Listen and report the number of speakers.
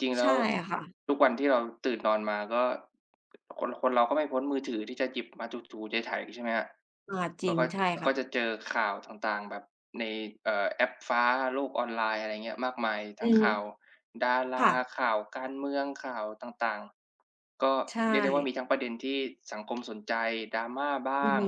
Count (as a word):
two